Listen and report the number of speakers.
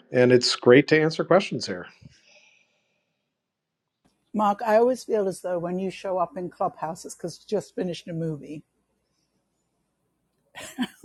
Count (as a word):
two